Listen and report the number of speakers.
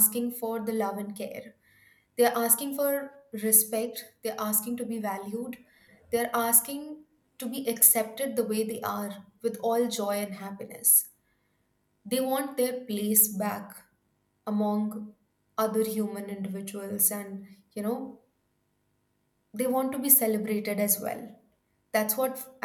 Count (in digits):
1